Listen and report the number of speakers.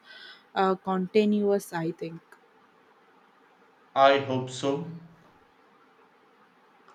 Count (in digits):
2